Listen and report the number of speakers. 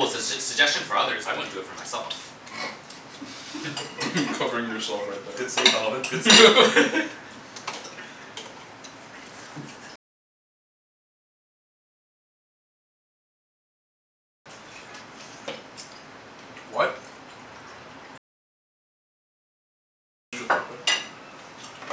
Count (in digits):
2